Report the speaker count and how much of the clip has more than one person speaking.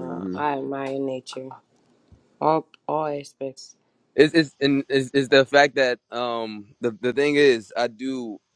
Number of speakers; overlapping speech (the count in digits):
2, about 5%